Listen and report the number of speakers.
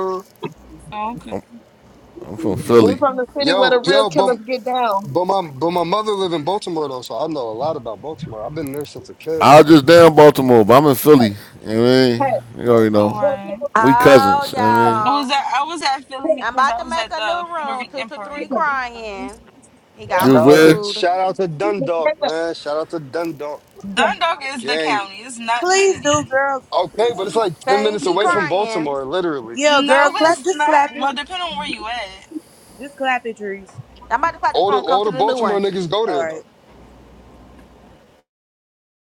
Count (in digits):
6